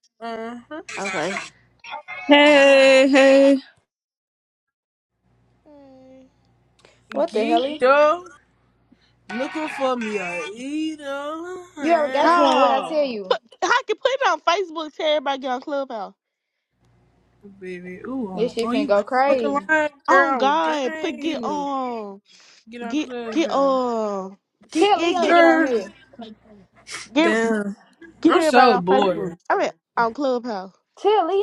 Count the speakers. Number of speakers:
4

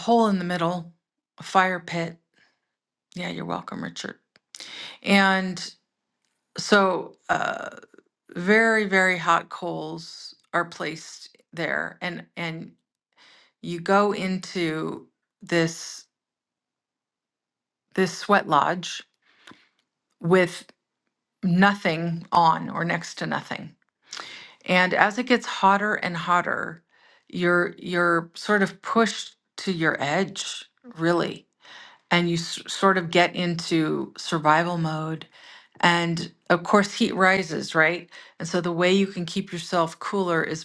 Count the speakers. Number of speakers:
1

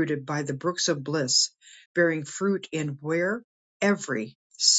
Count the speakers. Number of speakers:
1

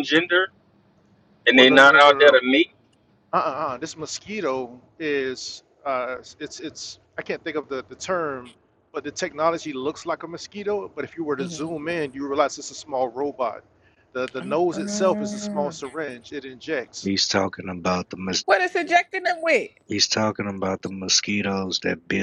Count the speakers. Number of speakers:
4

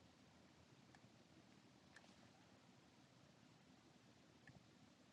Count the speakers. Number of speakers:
0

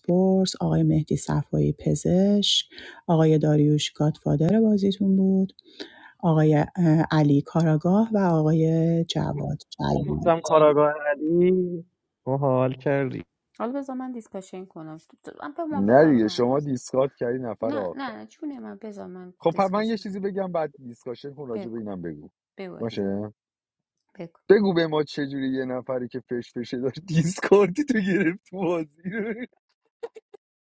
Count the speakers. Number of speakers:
4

